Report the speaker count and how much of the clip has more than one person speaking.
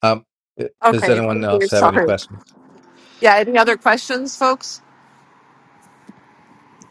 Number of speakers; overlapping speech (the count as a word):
two, about 19%